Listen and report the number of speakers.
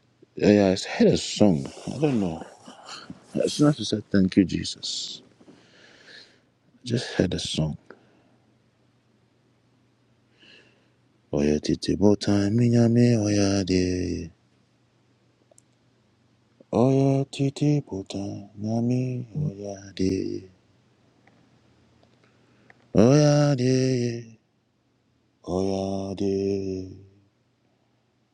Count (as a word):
one